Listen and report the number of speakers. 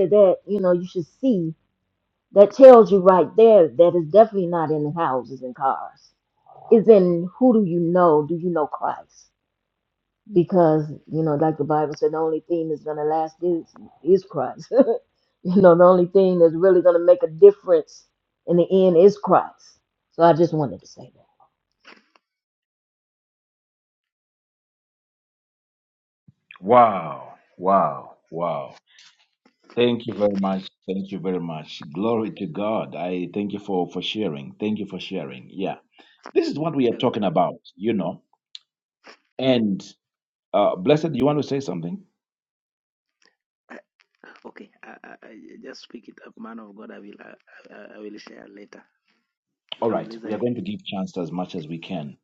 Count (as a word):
three